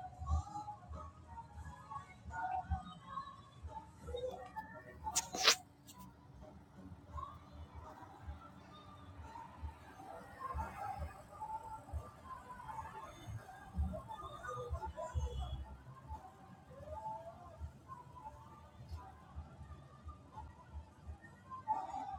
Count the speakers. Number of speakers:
zero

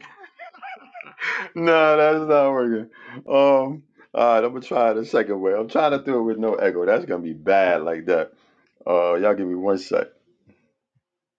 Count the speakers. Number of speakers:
one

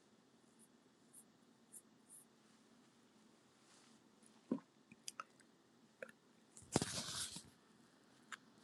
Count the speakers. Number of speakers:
zero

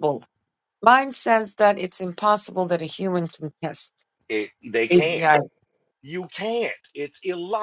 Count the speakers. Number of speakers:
two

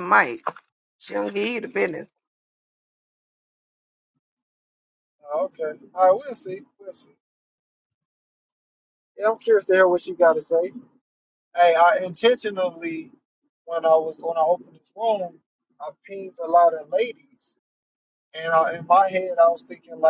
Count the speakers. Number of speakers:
two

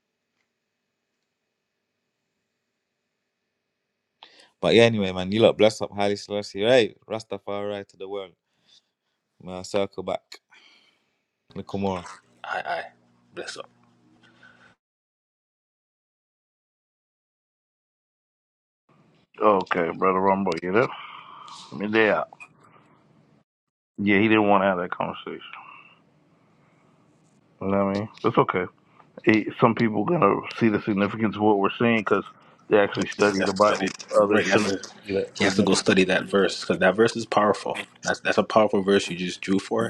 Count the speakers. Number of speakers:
three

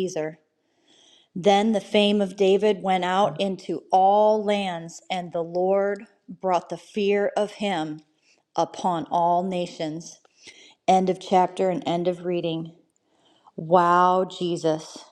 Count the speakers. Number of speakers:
one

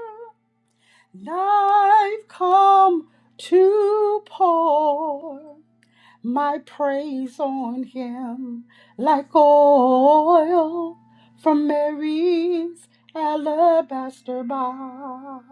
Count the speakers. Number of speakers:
one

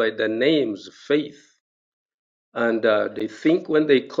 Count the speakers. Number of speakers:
one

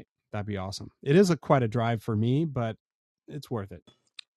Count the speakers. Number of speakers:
one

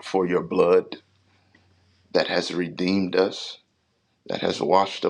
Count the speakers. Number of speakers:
one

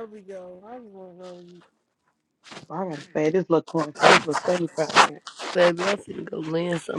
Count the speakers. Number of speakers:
three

